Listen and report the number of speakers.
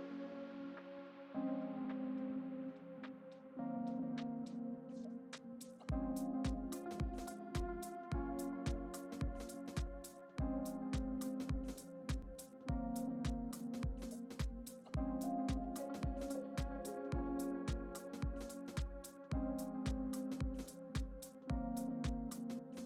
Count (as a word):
zero